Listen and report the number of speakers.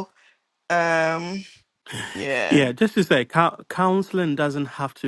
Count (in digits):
2